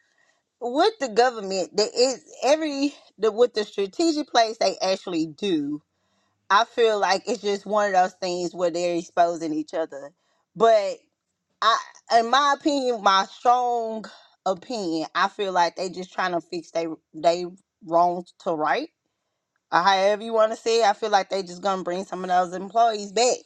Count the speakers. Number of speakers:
1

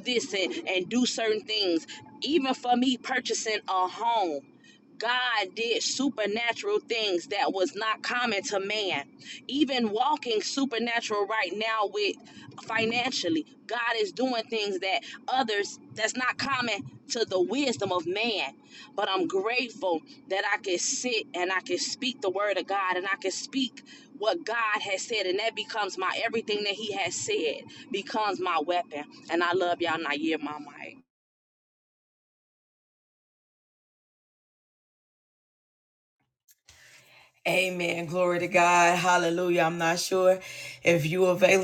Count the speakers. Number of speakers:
2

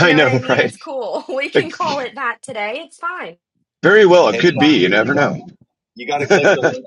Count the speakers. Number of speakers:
3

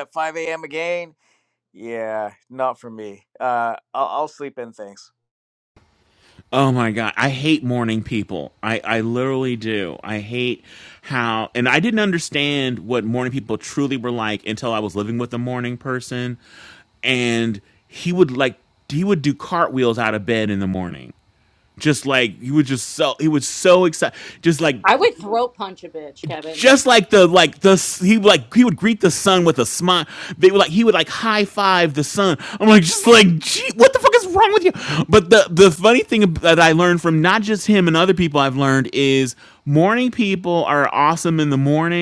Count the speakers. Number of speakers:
3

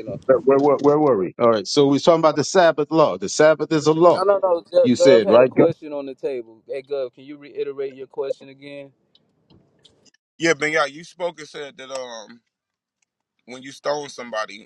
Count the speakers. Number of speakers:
3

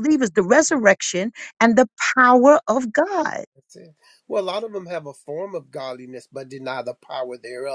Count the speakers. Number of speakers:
2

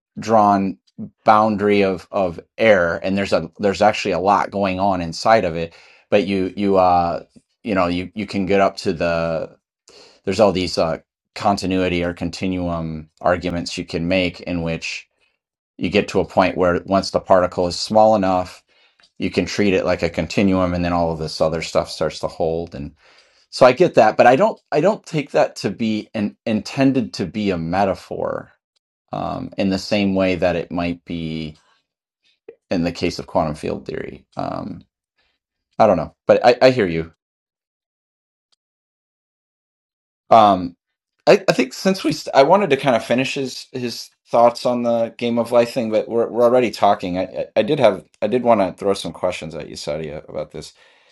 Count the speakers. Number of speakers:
1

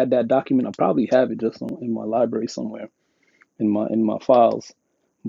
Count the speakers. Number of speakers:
1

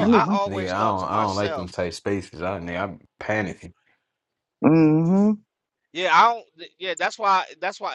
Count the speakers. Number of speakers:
3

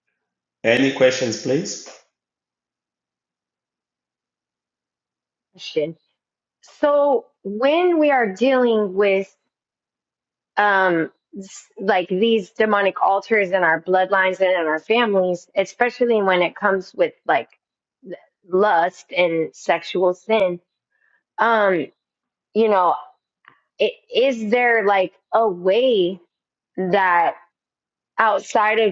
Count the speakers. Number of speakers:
2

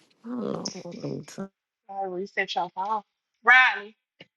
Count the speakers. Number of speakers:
2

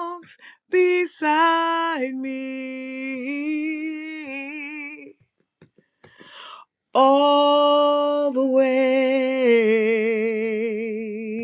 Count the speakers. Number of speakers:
1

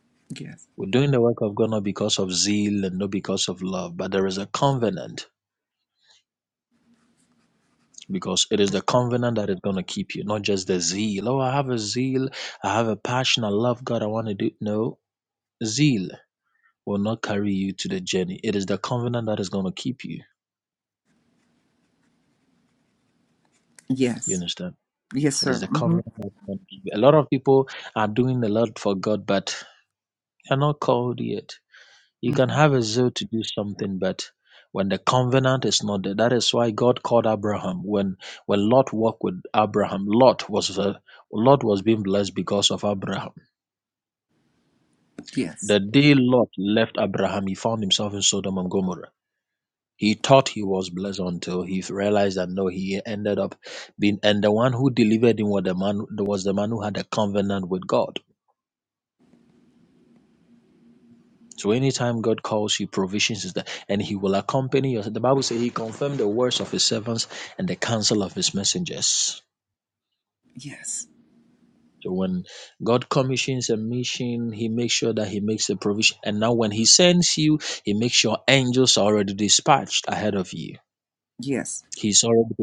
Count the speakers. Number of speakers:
2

